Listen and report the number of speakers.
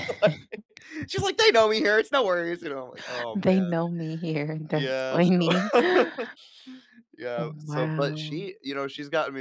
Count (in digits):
2